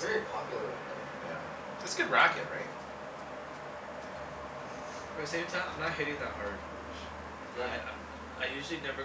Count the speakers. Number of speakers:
3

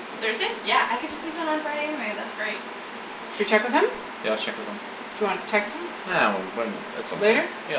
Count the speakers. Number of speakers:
3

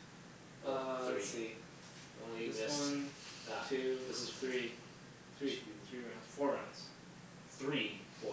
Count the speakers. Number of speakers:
2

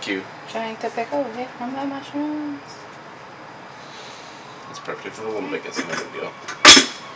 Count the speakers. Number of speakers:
2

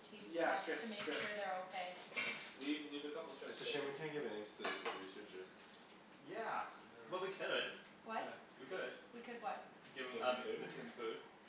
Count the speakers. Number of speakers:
4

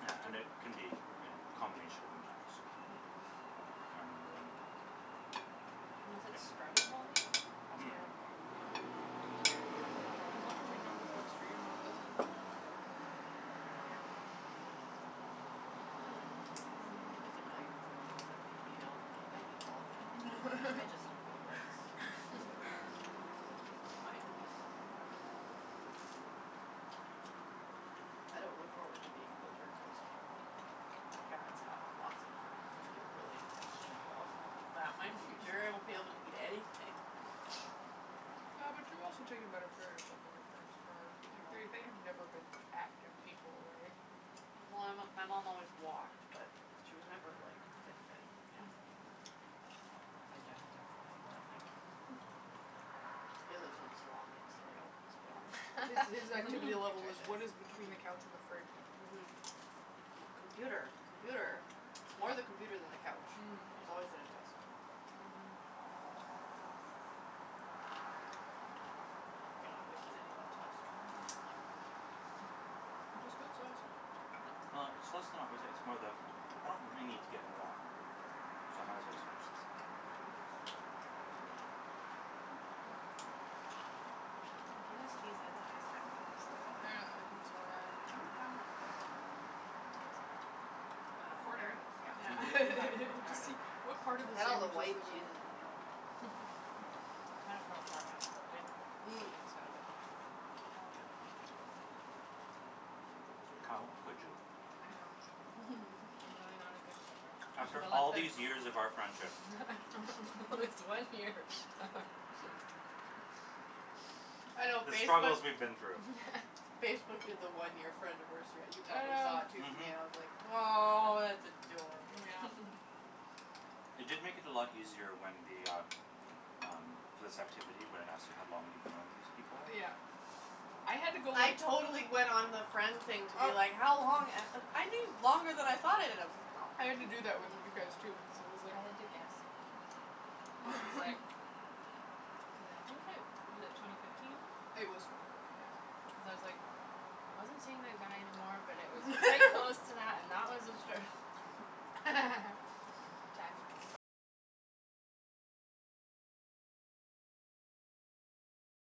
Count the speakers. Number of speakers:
4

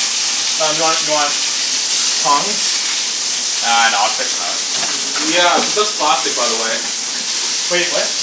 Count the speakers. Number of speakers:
3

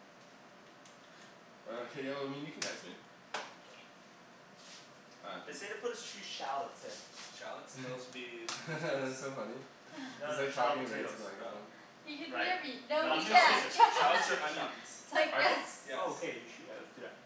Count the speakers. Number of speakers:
4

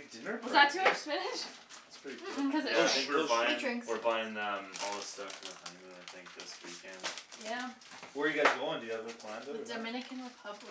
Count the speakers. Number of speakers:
4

